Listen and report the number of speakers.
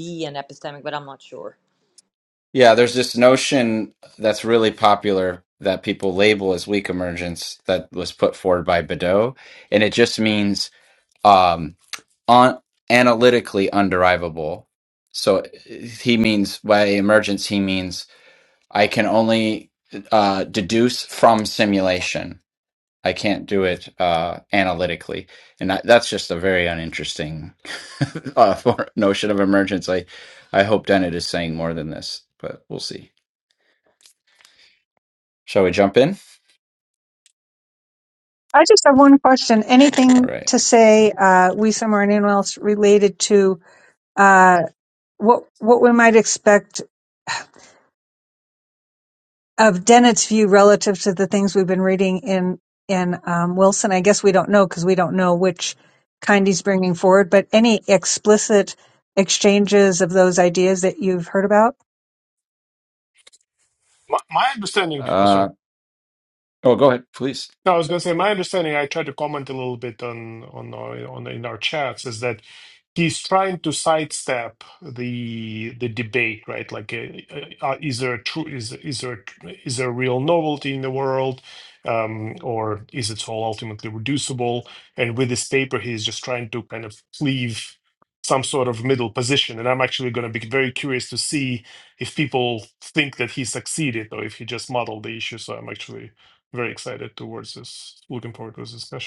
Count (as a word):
four